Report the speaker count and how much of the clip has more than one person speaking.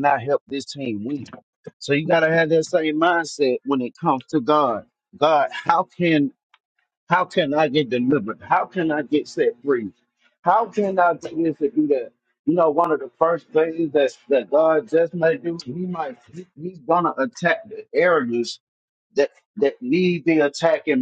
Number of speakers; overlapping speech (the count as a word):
one, no overlap